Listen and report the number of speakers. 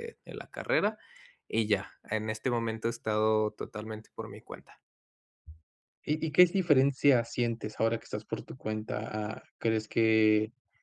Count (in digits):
2